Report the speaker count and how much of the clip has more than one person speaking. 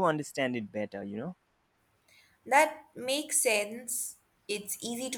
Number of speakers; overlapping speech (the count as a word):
two, no overlap